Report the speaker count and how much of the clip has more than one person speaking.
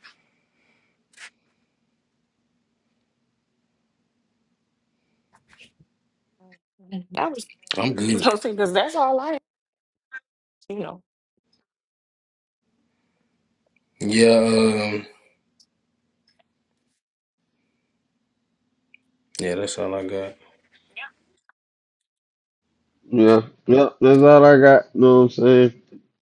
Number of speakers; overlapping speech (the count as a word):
three, under 1%